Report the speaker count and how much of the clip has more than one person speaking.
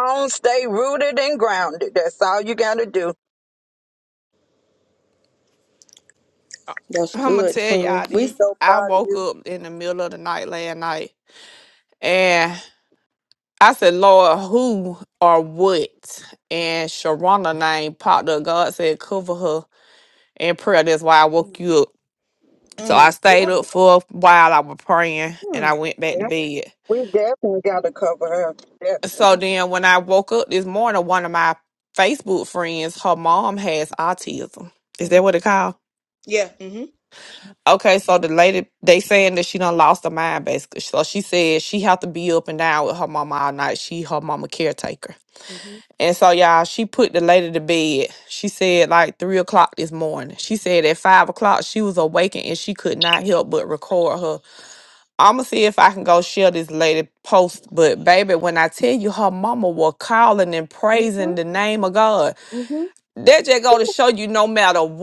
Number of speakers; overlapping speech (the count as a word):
three, about 6%